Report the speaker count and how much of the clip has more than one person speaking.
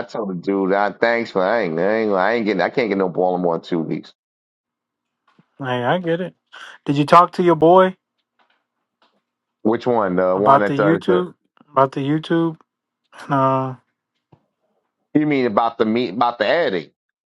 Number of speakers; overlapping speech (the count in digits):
2, about 5%